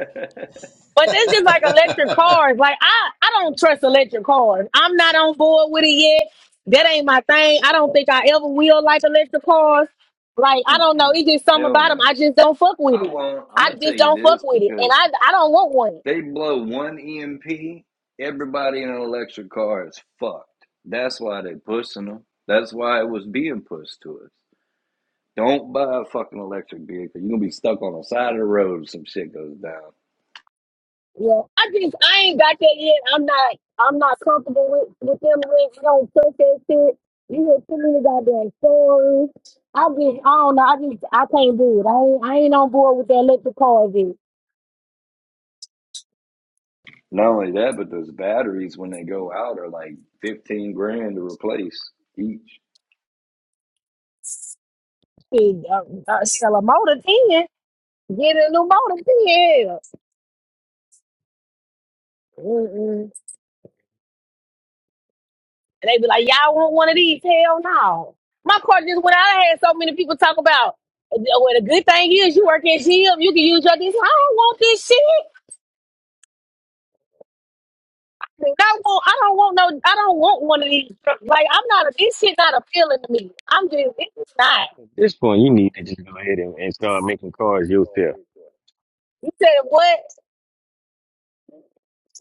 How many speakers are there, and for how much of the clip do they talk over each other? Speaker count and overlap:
3, about 2%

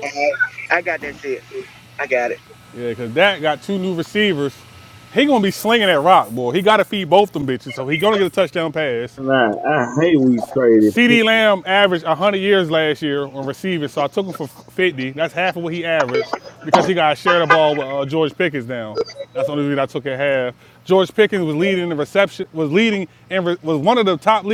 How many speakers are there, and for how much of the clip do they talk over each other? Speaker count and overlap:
3, under 1%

